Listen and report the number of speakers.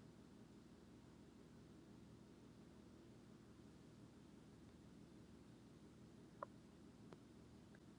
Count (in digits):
0